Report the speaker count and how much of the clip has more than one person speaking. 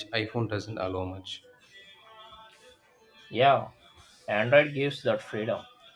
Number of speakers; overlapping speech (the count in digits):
2, no overlap